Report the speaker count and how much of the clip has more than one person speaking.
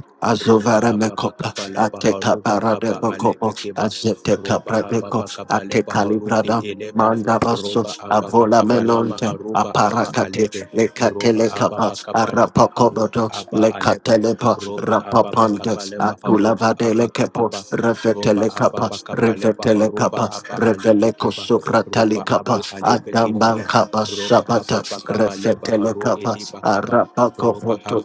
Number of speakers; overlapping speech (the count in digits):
2, about 81%